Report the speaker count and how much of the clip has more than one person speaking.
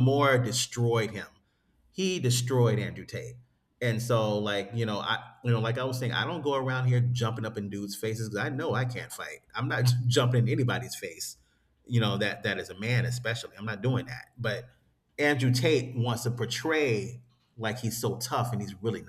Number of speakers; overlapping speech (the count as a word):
one, no overlap